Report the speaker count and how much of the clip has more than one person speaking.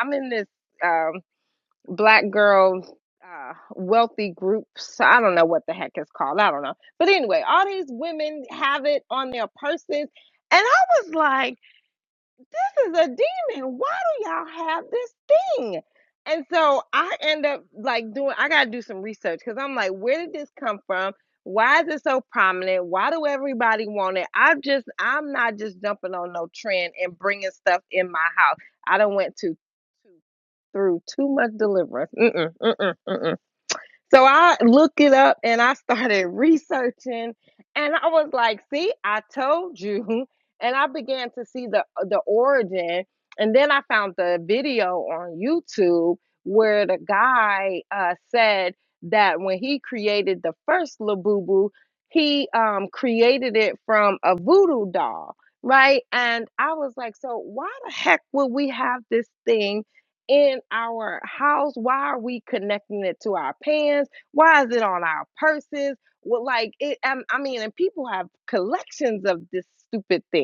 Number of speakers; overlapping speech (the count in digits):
1, no overlap